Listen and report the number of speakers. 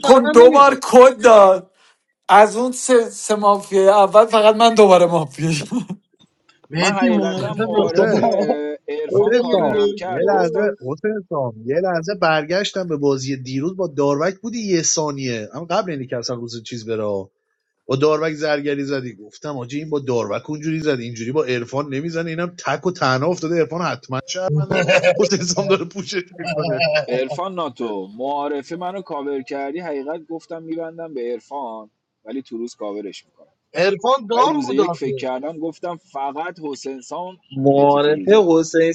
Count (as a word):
five